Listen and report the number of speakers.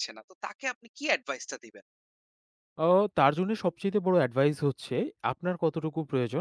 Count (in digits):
2